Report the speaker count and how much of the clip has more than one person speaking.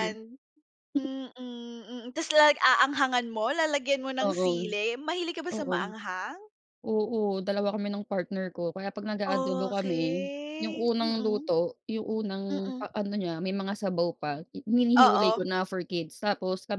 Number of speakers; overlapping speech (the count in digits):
2, about 20%